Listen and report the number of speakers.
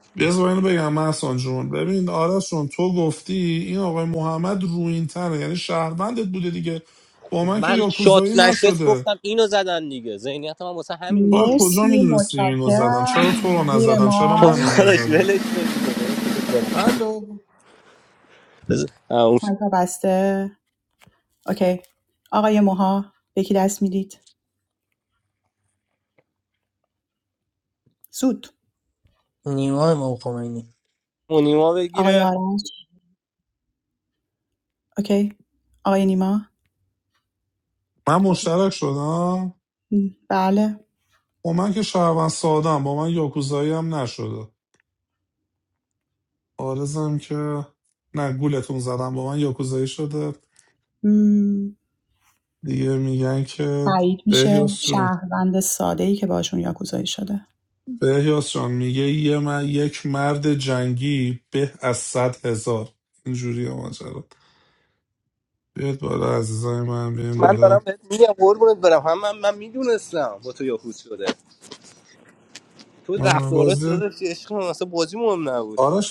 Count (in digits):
4